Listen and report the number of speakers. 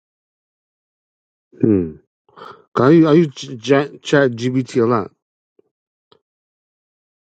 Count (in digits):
1